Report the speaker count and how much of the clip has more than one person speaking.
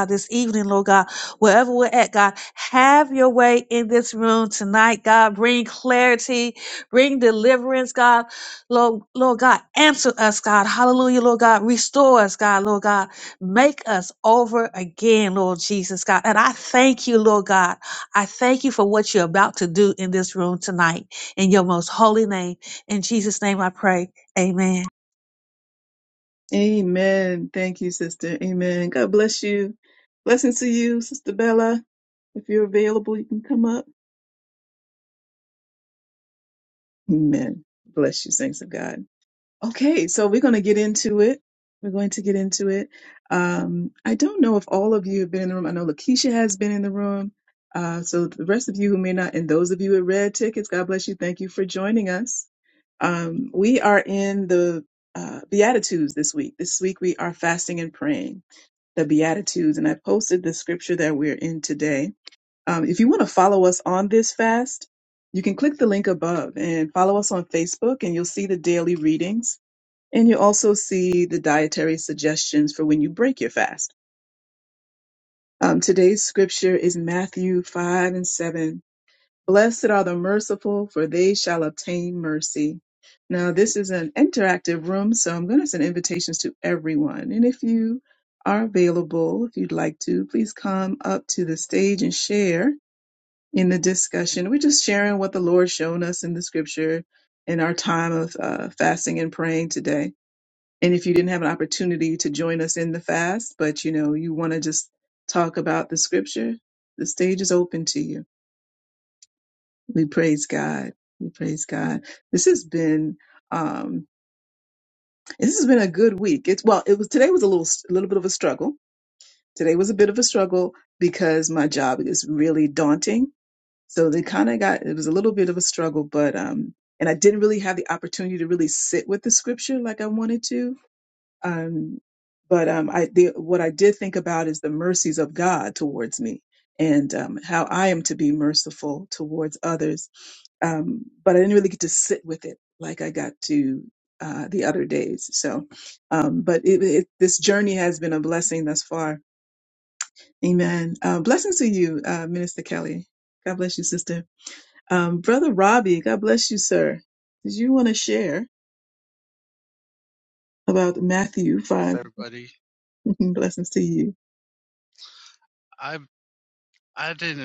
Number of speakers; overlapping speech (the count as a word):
three, under 1%